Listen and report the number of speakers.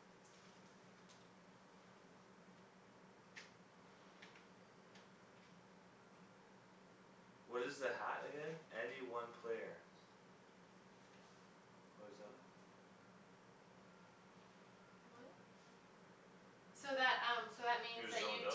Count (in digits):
2